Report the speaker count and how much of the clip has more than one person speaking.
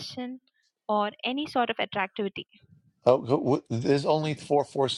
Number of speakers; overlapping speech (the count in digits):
2, no overlap